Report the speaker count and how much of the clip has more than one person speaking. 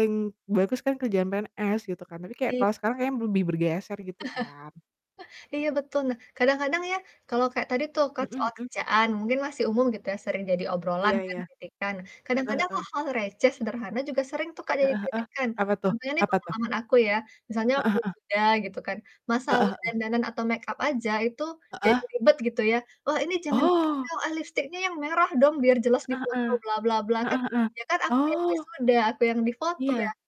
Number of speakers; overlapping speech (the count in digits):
2, about 18%